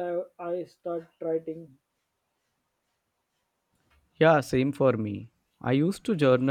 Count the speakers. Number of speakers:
2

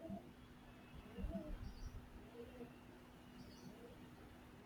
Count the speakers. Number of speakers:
0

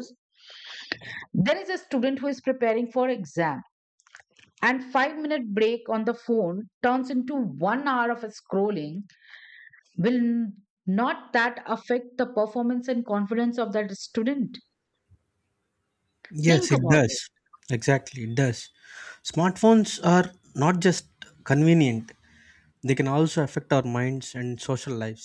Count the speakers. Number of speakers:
2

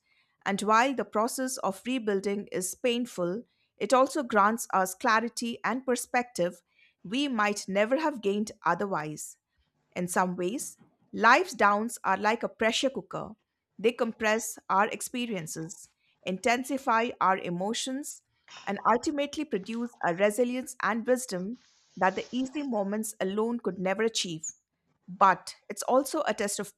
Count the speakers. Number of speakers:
1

